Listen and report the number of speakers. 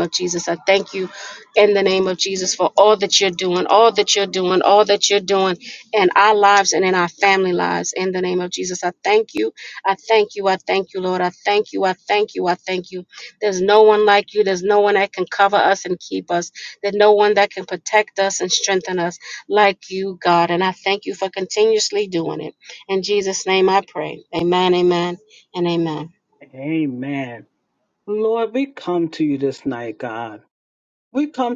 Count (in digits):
2